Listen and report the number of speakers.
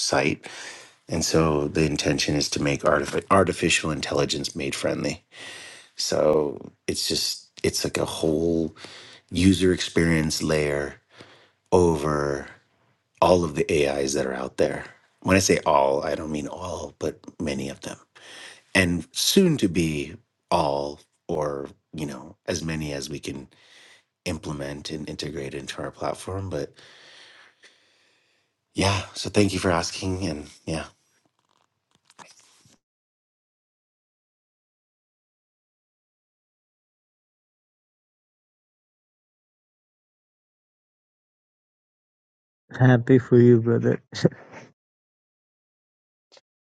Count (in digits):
2